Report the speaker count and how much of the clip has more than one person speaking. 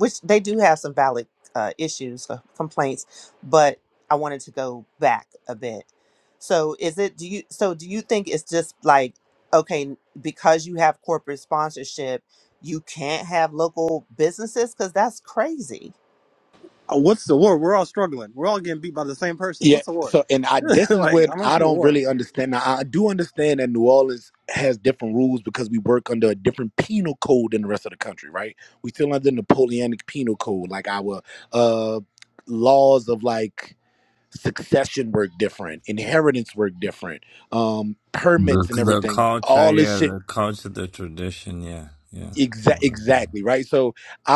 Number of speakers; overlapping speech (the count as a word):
four, about 7%